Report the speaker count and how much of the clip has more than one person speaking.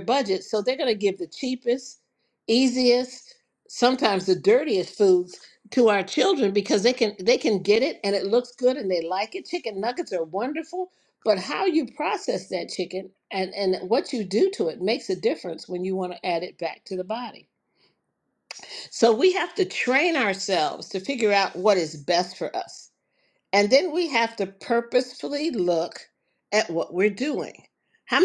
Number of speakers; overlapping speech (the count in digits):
1, no overlap